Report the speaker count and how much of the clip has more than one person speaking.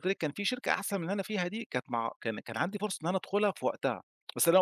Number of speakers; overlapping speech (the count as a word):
one, no overlap